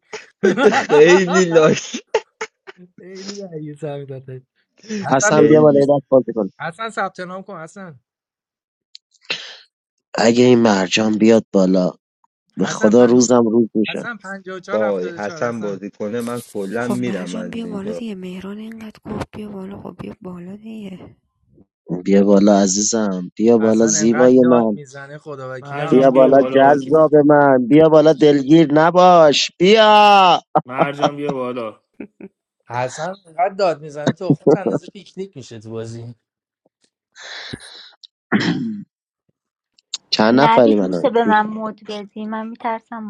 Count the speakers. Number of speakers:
6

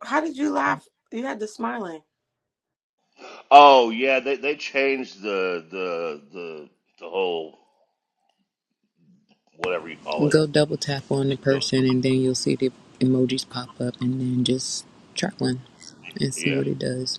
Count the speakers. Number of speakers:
3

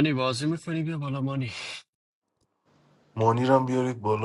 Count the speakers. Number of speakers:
2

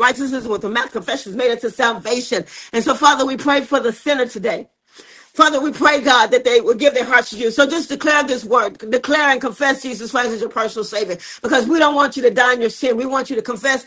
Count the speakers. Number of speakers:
1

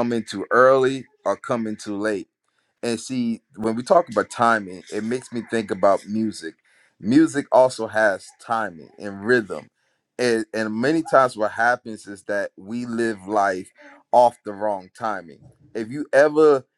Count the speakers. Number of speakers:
1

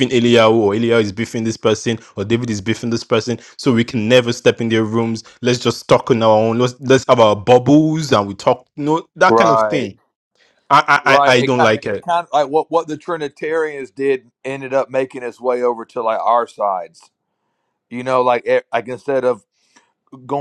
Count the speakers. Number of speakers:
2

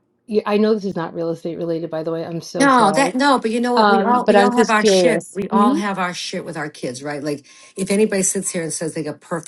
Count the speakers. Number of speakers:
2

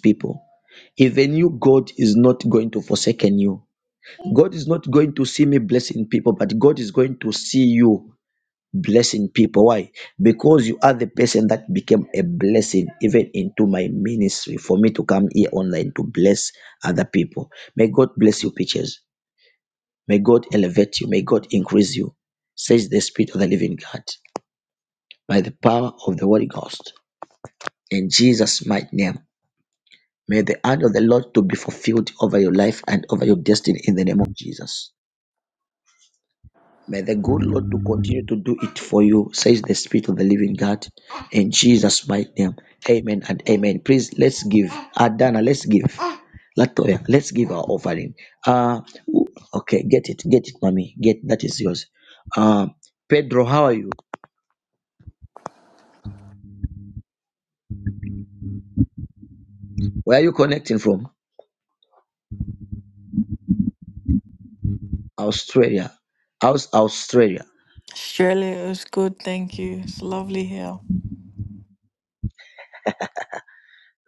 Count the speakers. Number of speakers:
2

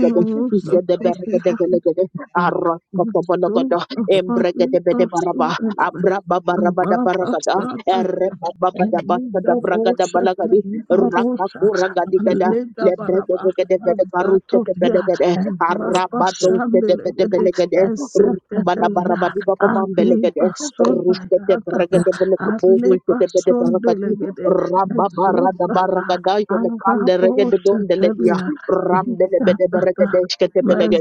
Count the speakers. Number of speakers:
2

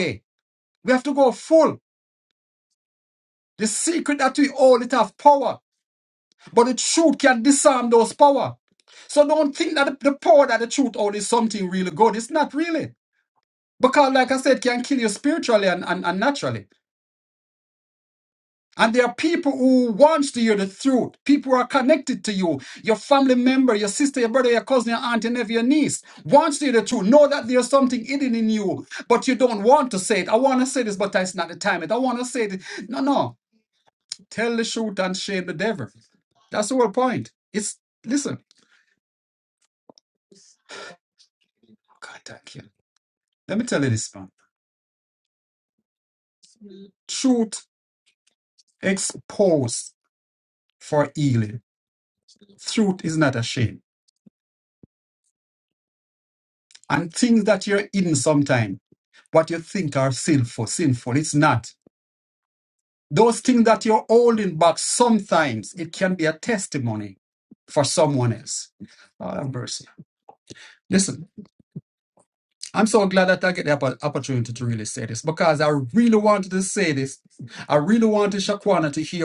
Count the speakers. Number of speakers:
1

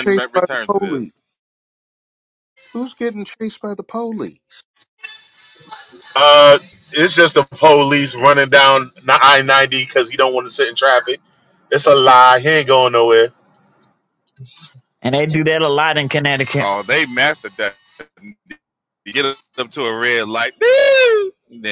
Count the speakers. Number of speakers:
4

